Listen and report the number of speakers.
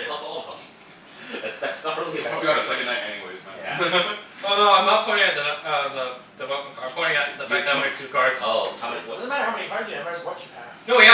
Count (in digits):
4